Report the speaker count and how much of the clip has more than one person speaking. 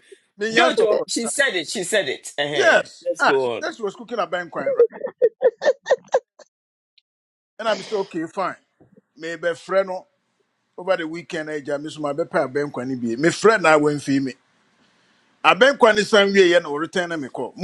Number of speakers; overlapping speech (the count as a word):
two, about 7%